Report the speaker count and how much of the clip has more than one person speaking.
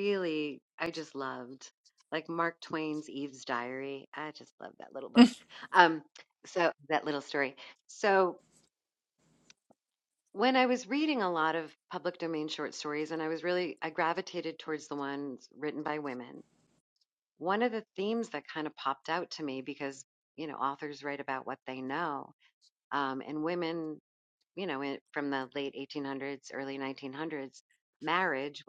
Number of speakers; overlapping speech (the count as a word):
one, no overlap